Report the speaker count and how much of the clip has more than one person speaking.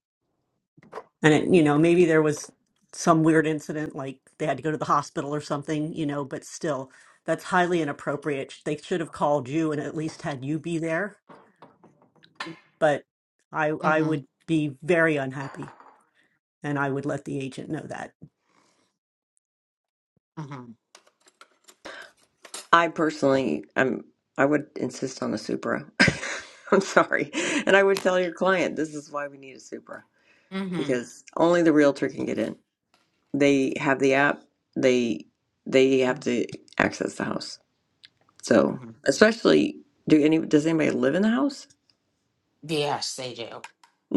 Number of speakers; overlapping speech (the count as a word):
three, about 2%